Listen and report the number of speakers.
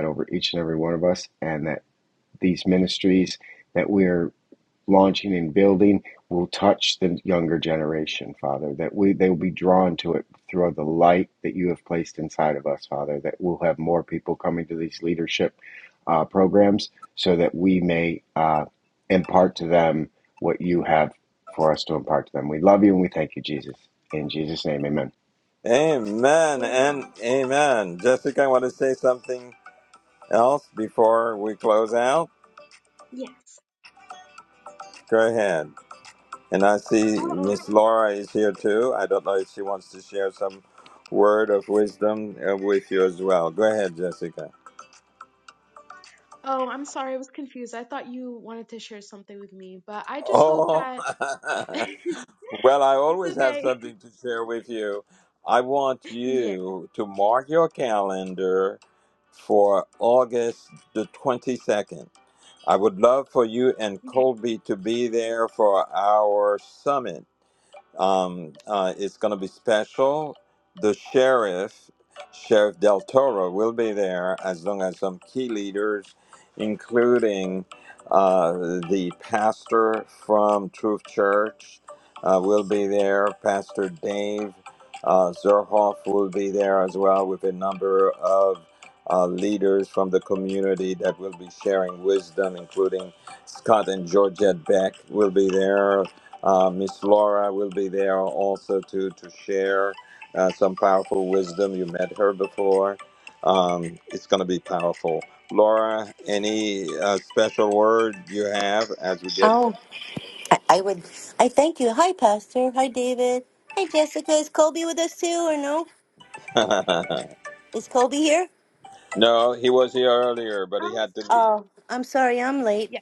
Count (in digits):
4